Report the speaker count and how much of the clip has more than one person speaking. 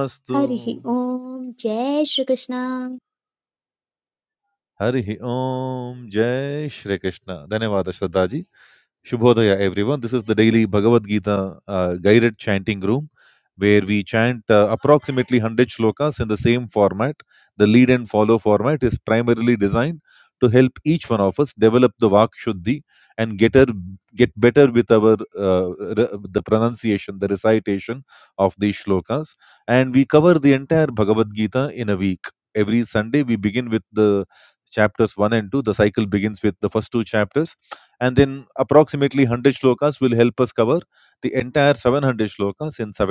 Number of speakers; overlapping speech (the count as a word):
two, about 1%